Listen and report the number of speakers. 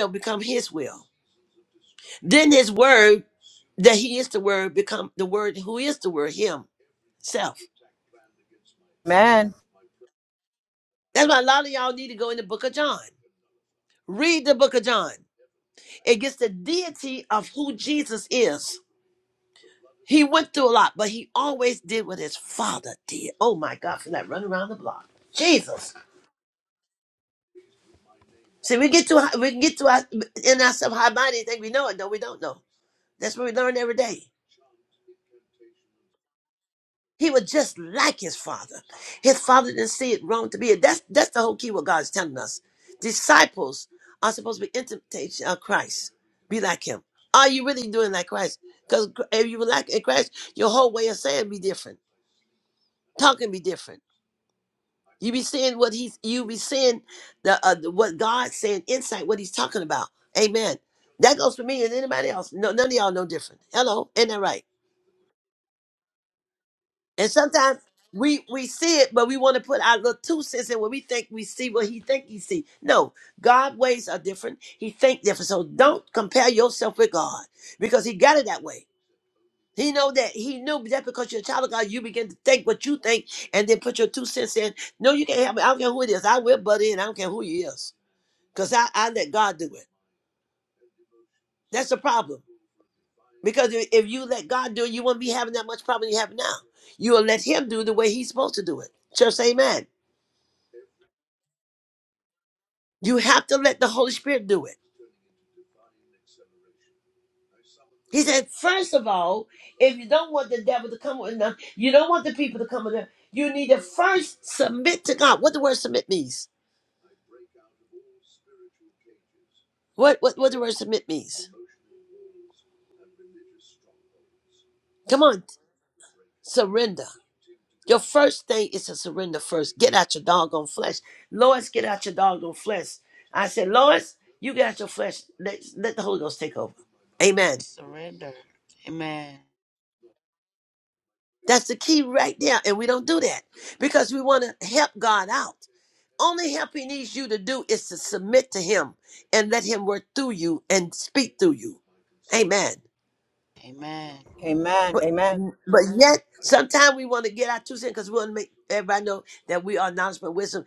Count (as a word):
three